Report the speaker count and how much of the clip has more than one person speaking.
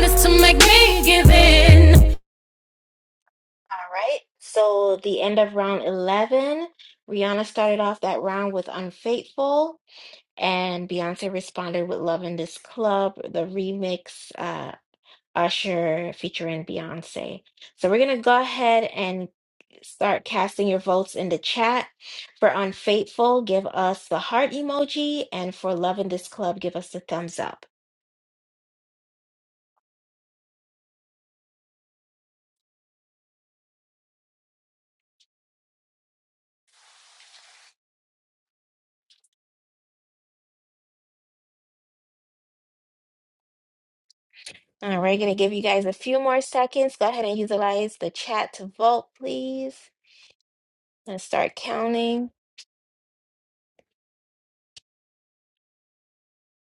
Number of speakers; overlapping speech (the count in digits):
2, no overlap